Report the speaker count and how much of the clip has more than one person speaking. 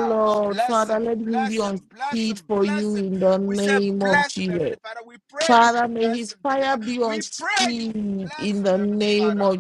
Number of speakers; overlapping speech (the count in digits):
2, about 84%